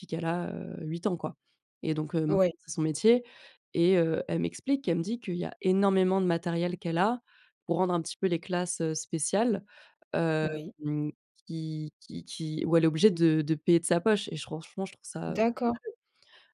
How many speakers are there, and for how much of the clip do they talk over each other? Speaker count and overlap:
2, about 2%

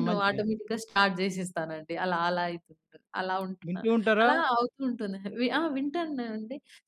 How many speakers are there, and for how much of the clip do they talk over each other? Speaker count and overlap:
2, about 12%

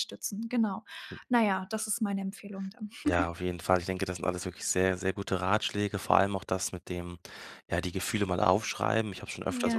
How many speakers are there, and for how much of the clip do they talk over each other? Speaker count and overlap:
2, about 3%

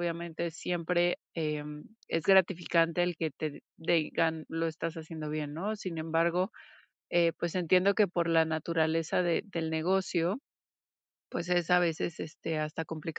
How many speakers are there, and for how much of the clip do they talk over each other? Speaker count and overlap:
1, no overlap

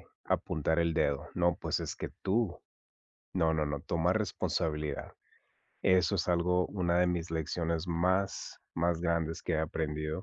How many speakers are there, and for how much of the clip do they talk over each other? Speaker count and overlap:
1, no overlap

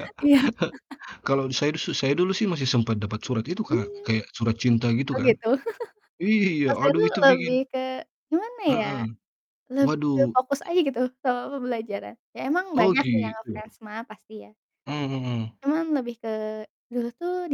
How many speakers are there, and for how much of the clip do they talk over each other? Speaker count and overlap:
2, about 18%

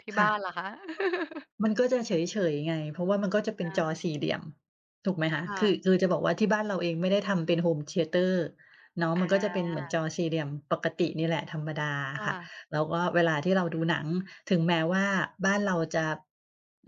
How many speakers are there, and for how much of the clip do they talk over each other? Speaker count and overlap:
2, about 12%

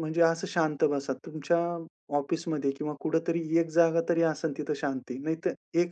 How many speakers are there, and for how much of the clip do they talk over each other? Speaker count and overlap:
1, no overlap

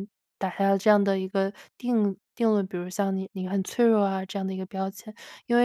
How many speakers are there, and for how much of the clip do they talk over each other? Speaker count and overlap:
1, no overlap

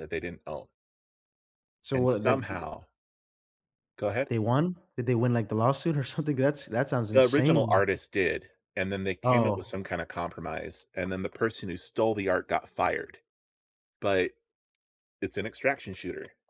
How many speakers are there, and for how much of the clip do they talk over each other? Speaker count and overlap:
2, about 11%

